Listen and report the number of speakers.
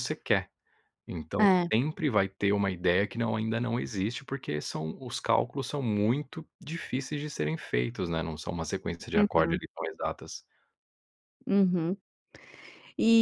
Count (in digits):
2